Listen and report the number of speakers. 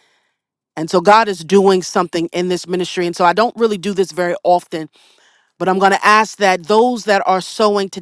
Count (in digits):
1